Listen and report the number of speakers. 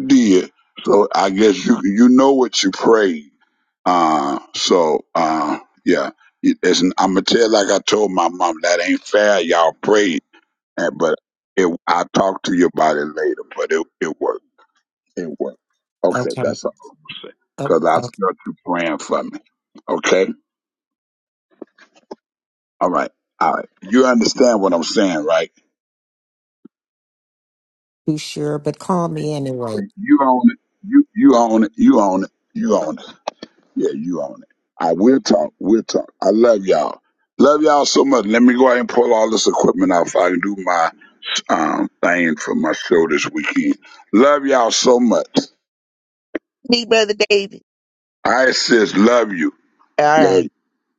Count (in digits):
3